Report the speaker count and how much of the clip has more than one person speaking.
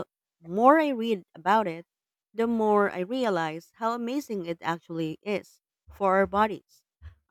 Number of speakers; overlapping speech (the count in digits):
1, no overlap